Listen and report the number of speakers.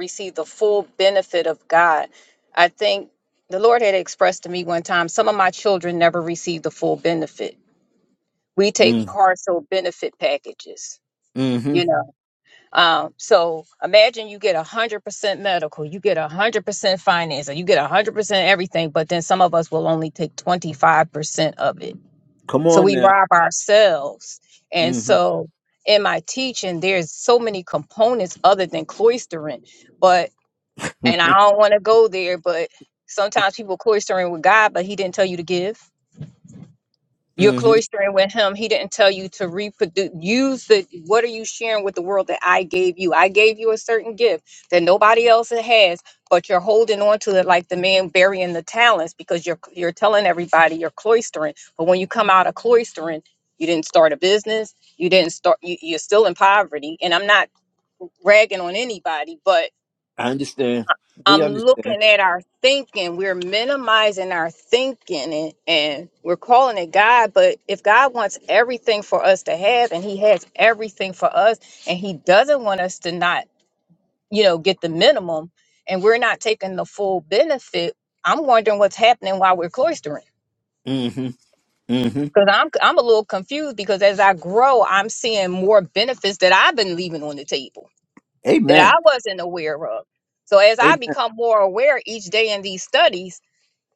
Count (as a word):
two